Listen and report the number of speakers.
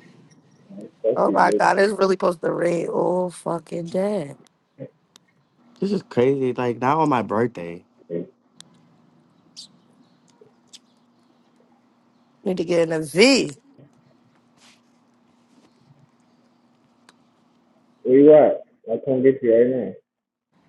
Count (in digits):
3